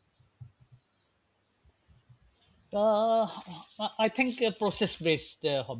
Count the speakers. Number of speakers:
1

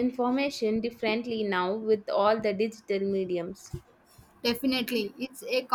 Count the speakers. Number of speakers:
2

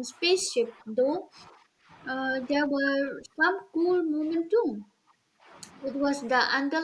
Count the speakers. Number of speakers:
1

